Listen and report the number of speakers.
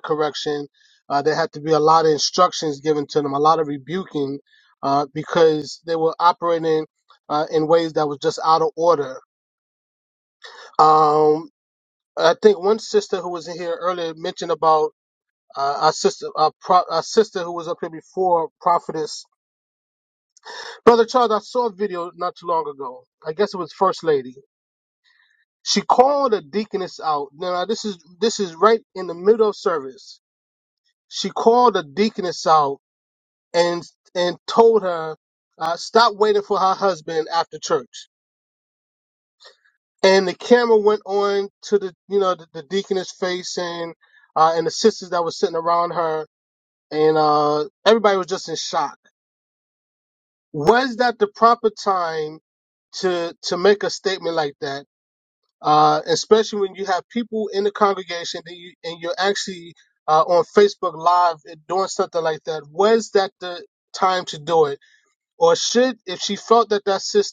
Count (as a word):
one